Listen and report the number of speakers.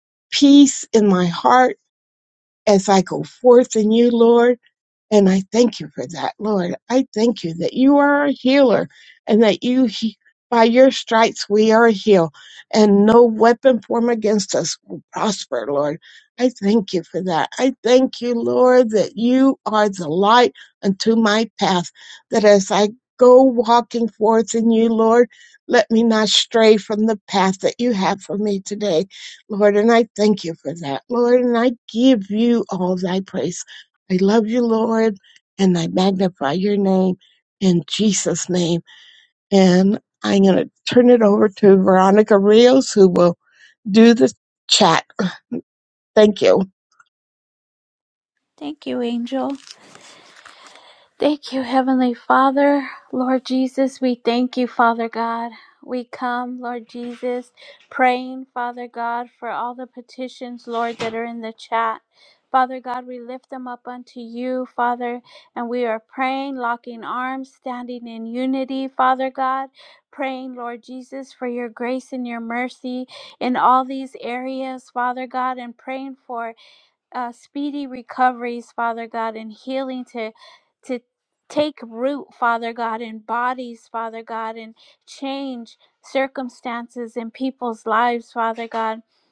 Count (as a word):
two